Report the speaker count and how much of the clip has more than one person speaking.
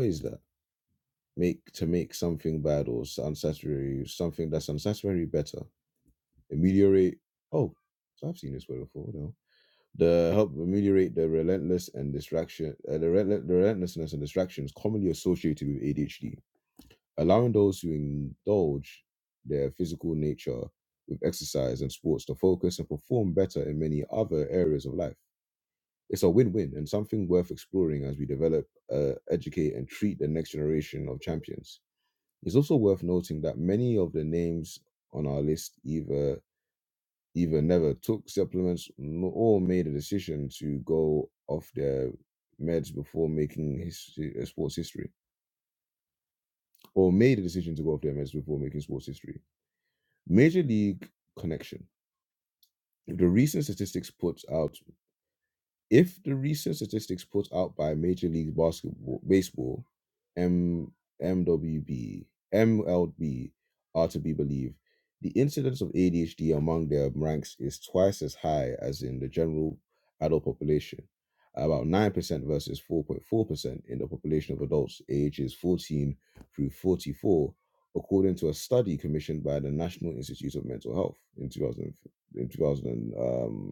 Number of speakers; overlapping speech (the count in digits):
1, no overlap